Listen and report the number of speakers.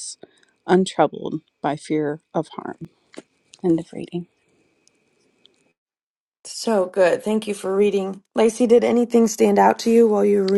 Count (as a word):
two